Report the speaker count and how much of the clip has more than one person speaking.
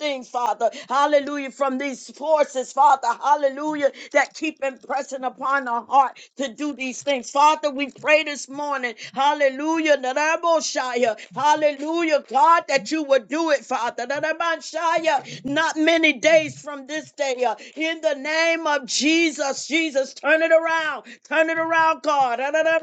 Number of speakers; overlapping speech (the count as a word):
one, no overlap